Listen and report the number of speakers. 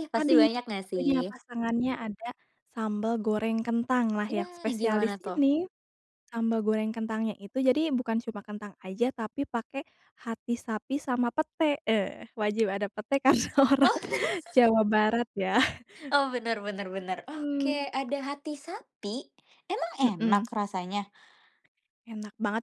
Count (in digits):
2